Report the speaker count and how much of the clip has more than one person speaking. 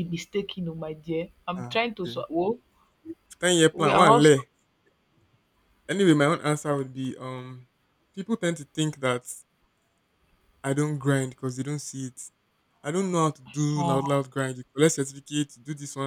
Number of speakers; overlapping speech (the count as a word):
two, about 10%